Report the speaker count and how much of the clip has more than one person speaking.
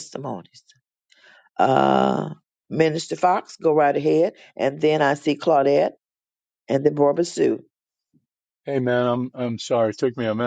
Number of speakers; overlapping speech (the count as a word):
two, no overlap